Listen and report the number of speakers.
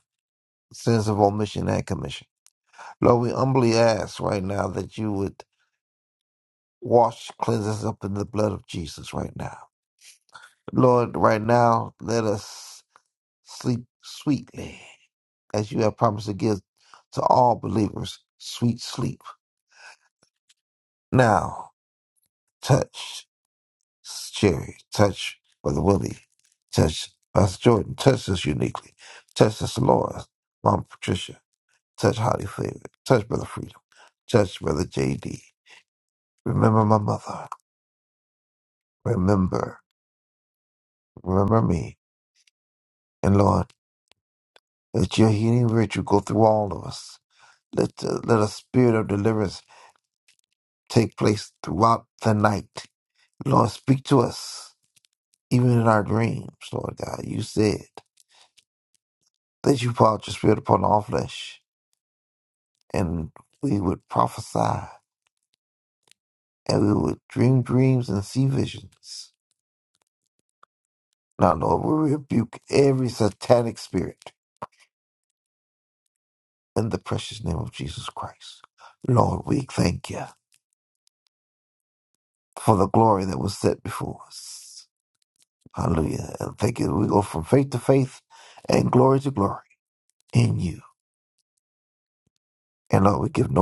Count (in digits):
1